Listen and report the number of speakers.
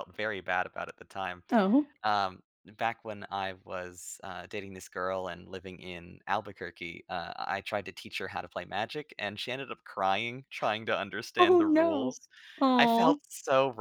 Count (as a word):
two